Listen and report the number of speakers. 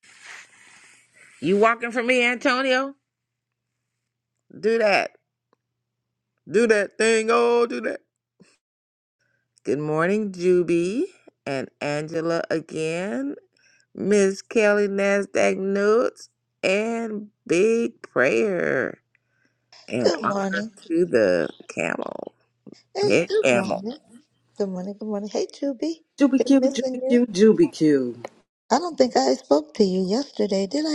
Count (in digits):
3